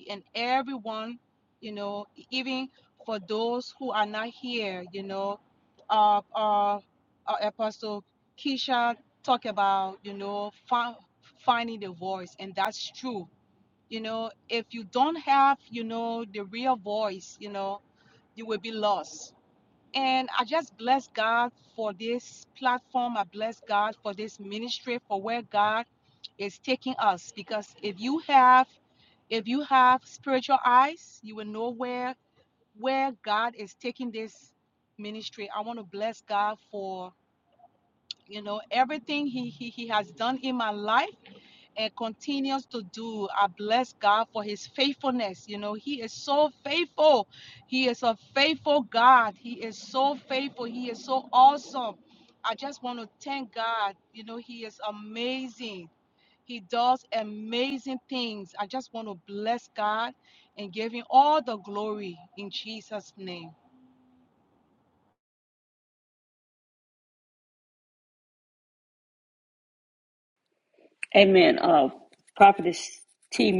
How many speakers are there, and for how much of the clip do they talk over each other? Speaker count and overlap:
two, no overlap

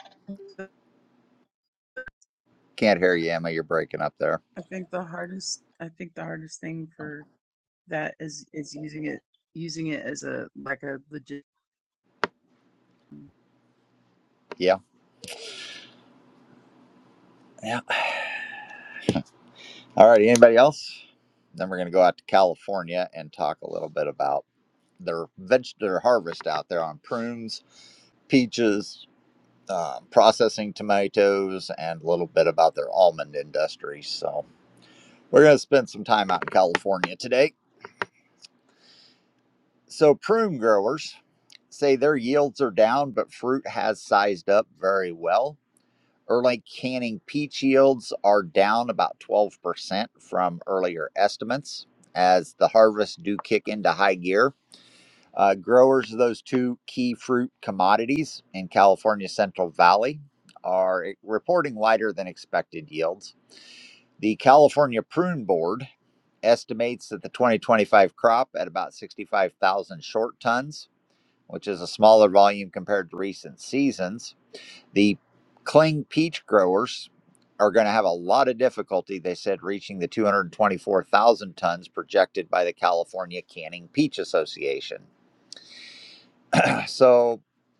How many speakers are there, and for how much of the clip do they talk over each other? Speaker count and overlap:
two, no overlap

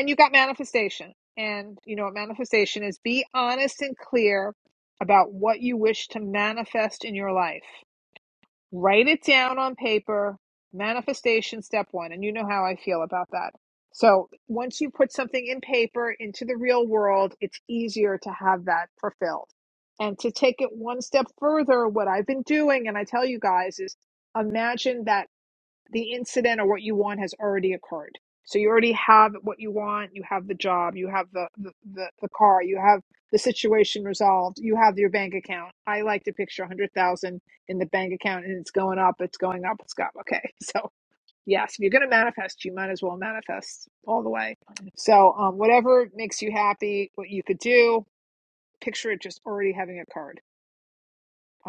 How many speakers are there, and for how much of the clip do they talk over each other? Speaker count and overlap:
one, no overlap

